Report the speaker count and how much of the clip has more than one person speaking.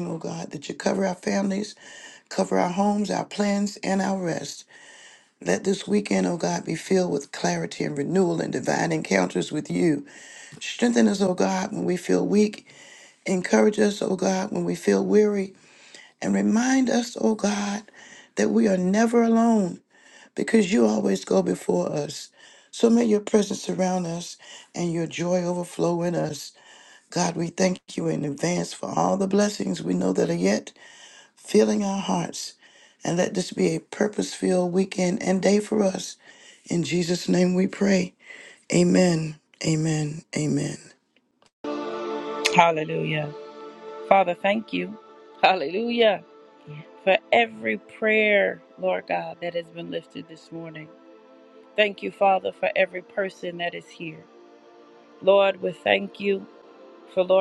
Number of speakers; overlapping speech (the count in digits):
2, no overlap